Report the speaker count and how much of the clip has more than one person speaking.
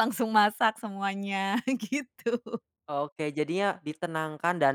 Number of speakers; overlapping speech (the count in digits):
2, no overlap